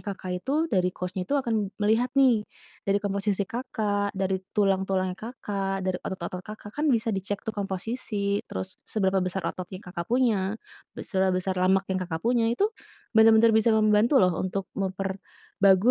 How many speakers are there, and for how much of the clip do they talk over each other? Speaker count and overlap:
one, no overlap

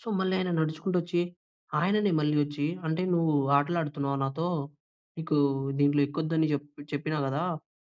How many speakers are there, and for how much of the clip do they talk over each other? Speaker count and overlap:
one, no overlap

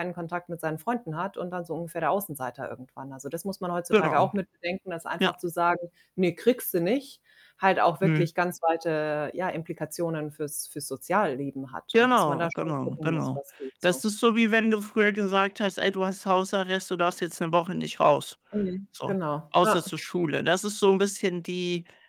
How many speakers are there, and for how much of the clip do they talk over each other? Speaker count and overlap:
two, about 14%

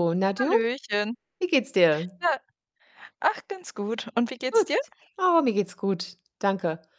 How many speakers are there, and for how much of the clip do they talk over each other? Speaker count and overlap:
two, about 6%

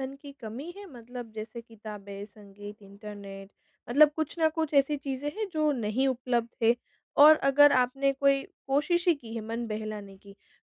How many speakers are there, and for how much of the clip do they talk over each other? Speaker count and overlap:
one, no overlap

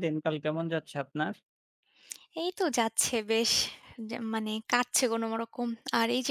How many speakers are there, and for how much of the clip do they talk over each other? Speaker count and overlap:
two, no overlap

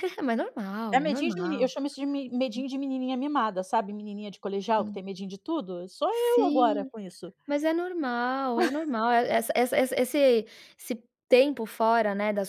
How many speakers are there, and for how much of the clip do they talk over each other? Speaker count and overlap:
two, about 13%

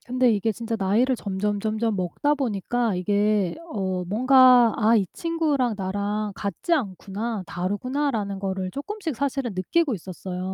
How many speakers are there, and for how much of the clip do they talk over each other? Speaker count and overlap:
one, no overlap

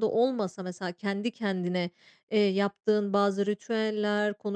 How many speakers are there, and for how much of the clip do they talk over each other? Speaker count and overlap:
one, no overlap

